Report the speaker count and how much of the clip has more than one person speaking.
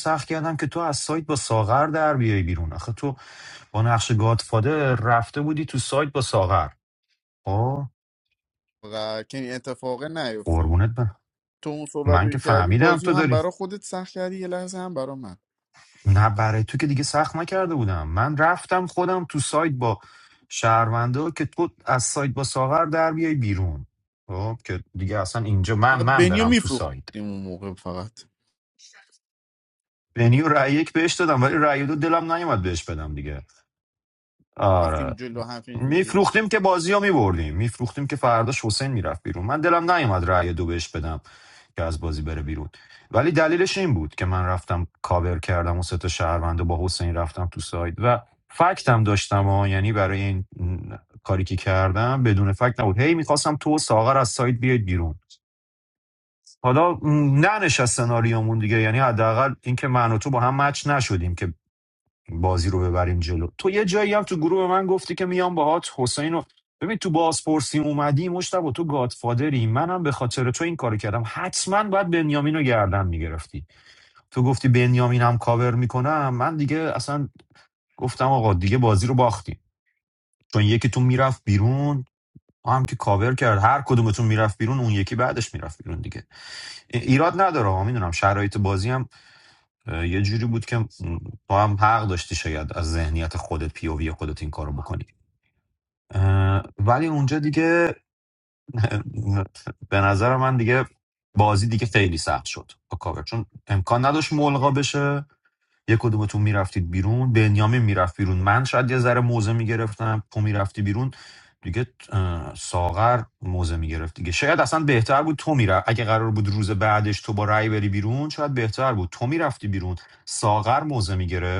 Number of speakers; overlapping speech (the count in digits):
2, about 2%